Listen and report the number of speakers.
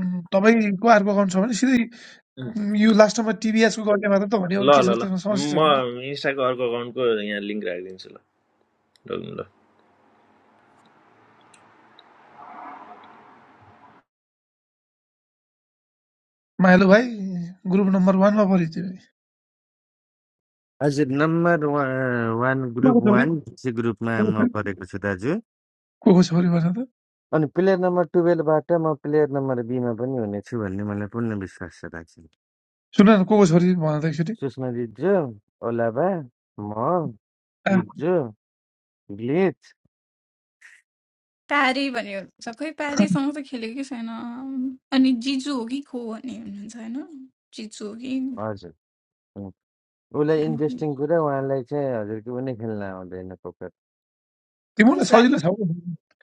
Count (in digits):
4